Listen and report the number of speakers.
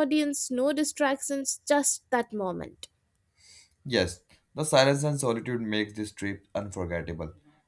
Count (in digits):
2